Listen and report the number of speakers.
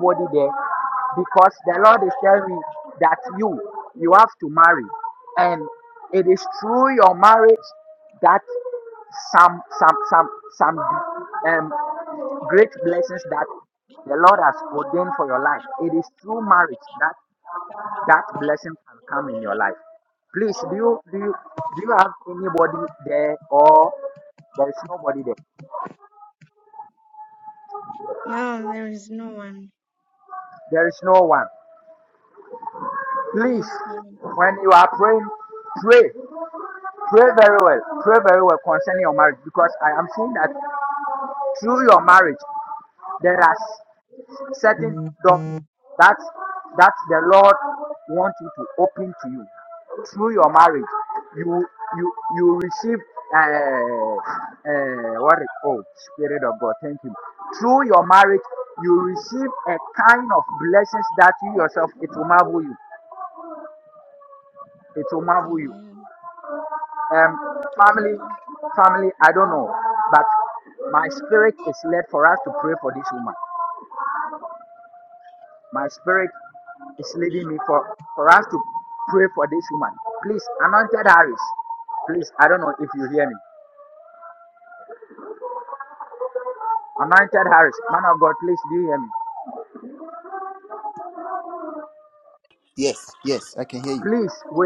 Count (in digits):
3